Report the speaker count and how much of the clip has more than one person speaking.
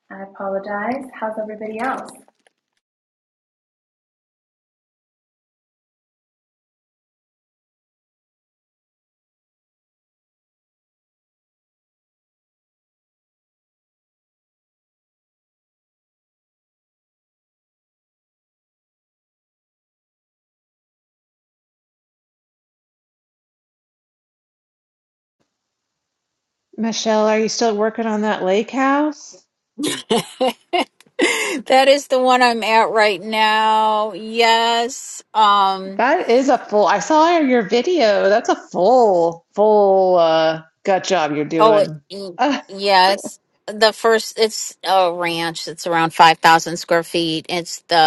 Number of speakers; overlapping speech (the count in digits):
3, about 1%